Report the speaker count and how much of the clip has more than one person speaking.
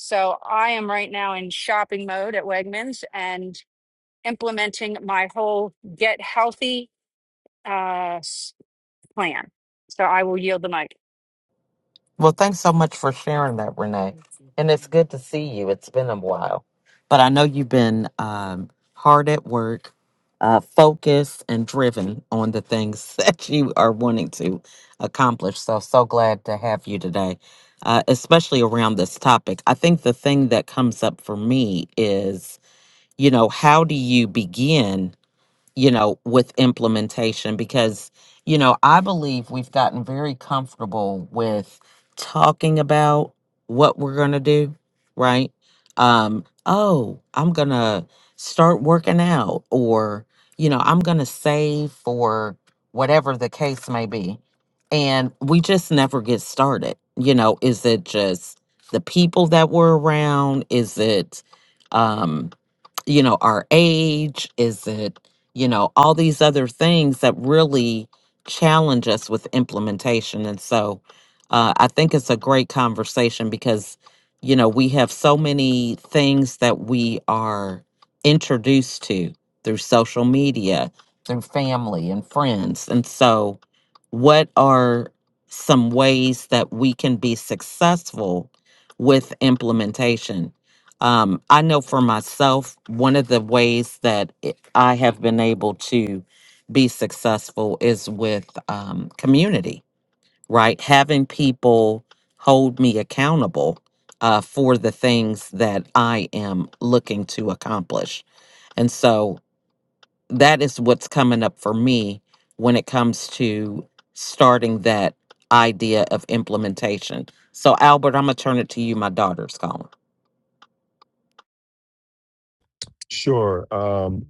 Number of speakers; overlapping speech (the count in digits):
3, no overlap